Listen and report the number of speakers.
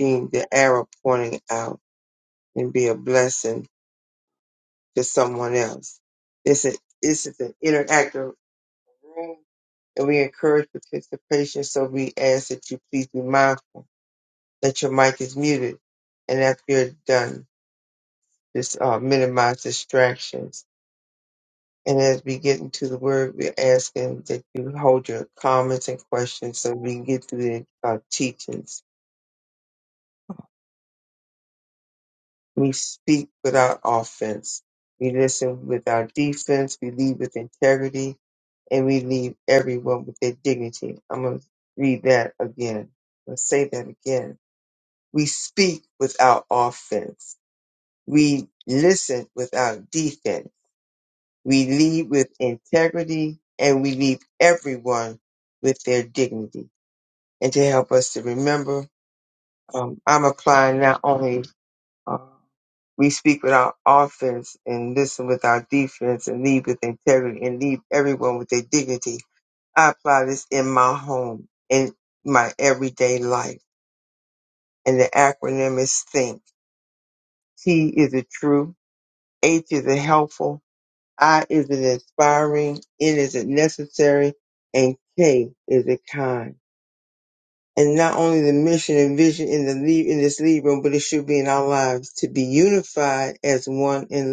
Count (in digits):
1